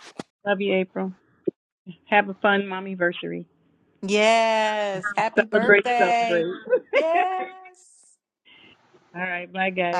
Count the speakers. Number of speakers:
2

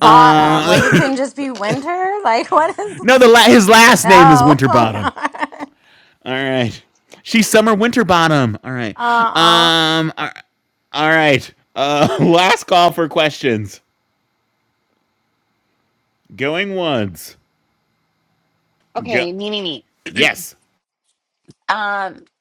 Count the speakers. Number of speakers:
3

